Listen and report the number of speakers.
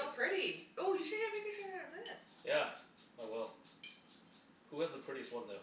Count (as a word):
two